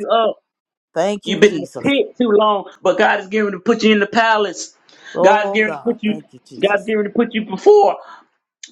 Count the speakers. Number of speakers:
two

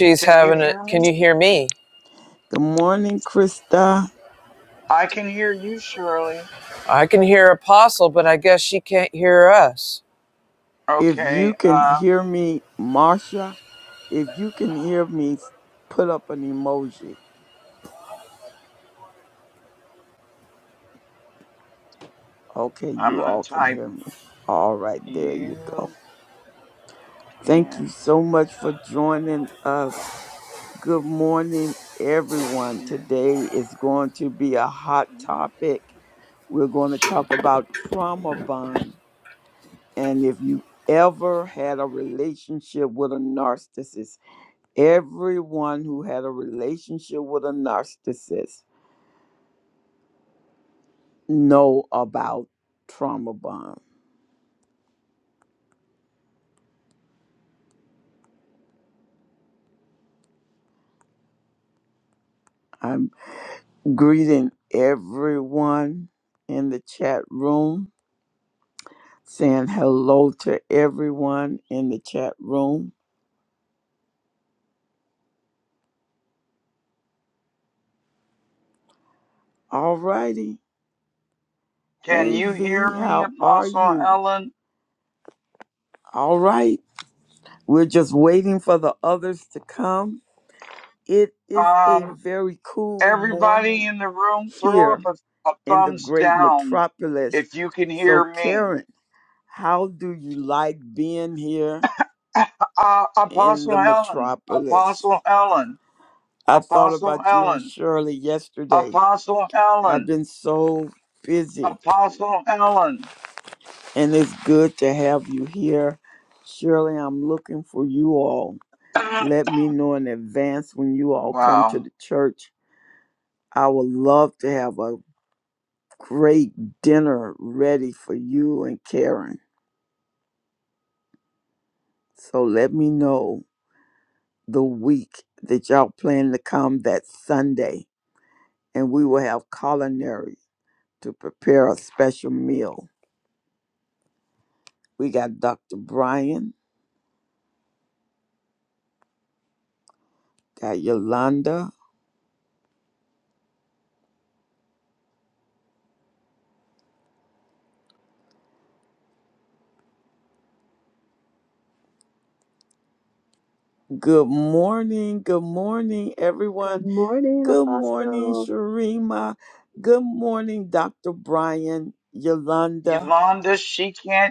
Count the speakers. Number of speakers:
four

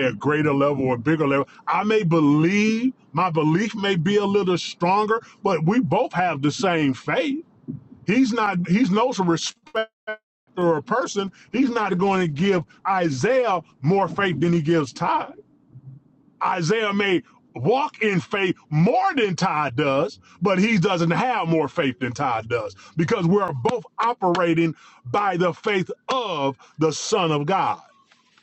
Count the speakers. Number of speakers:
one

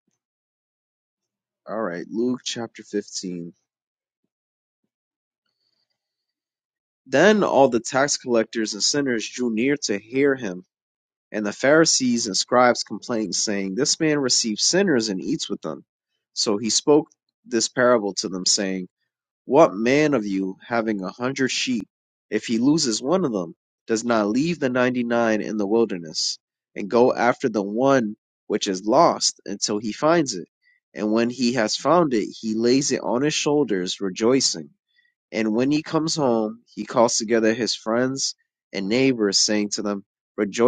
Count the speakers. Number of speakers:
one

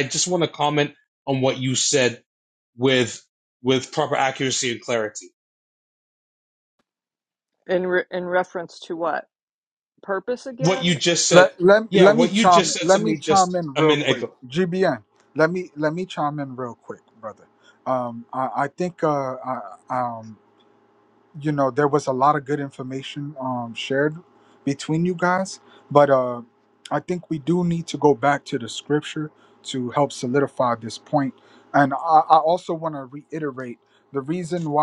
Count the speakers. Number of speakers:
three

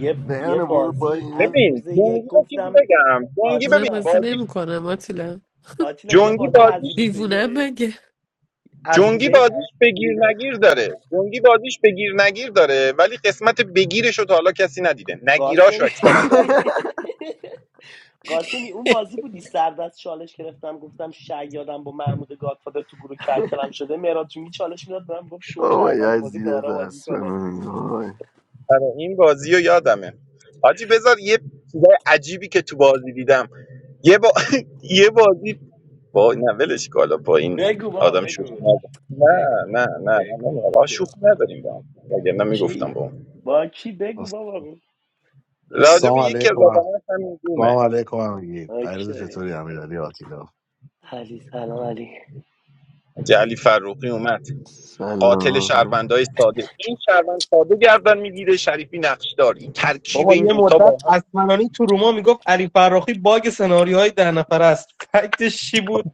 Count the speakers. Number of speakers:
six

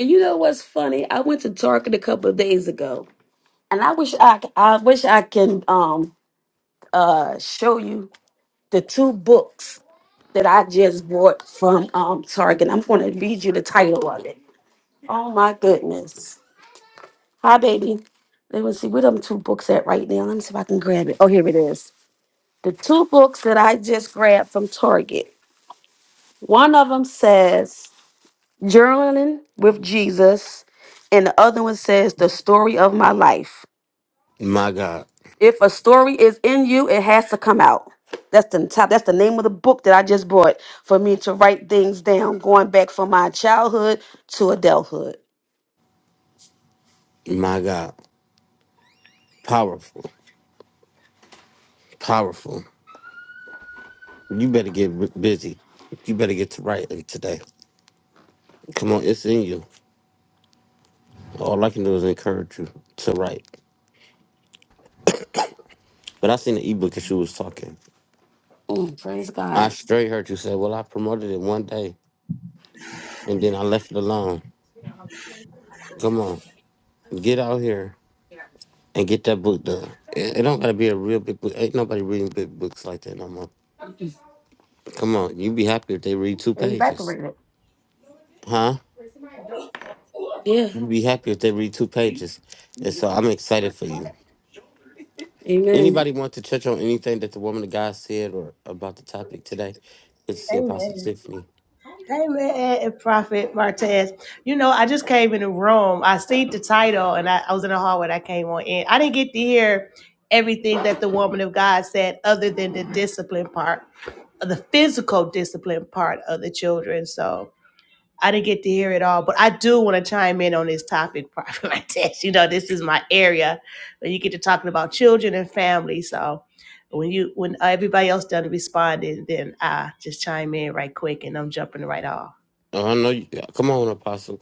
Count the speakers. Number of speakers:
three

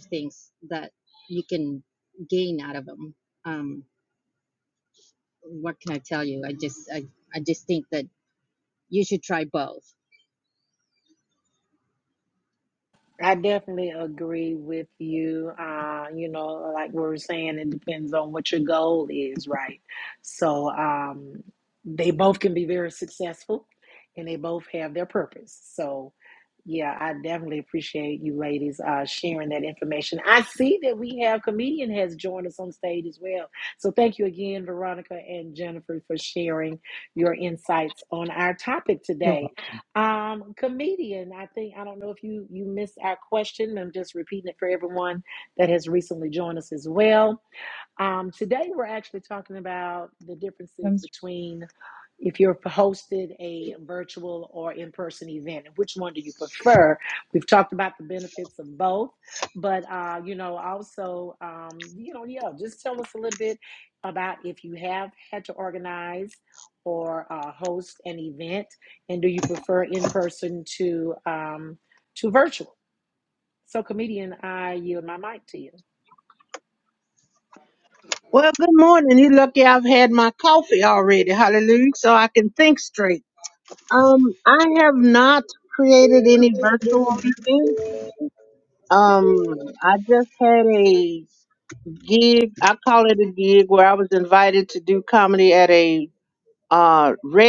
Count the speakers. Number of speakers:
three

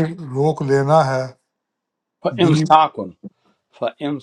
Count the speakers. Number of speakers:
two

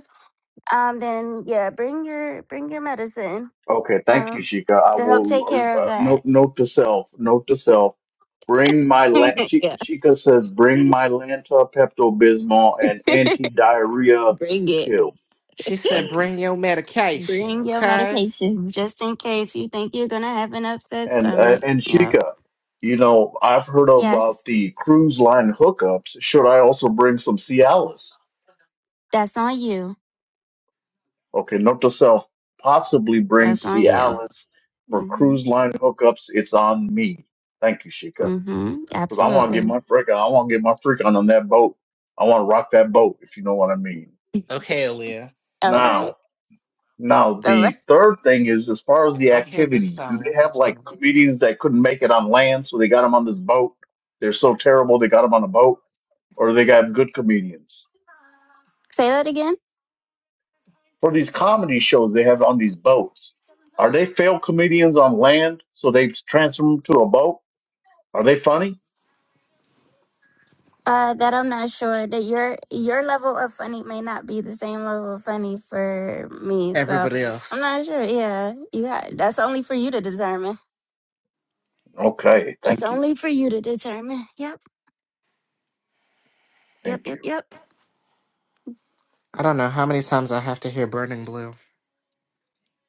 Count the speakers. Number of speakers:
three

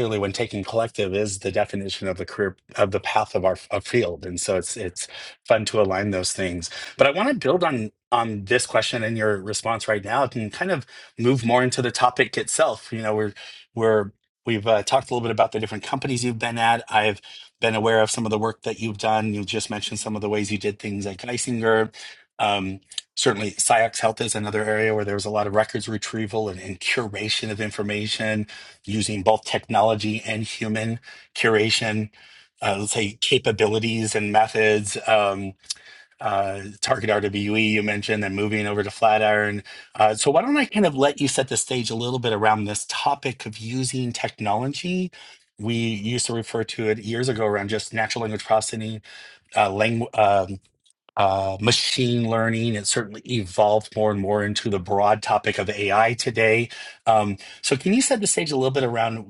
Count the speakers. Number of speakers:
one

